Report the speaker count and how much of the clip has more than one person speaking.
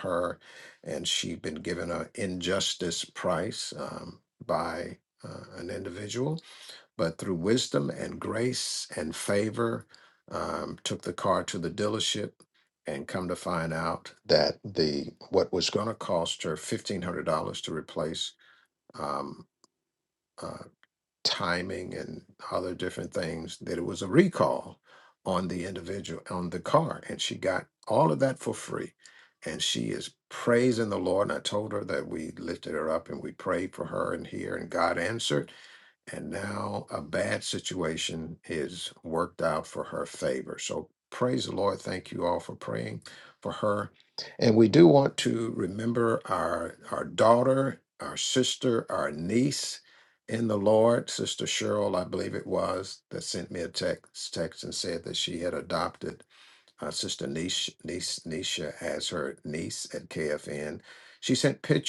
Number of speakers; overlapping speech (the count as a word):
one, no overlap